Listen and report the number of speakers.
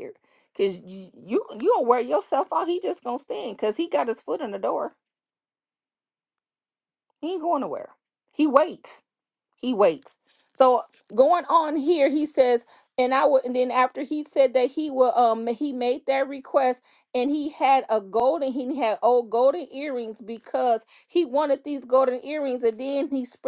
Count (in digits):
1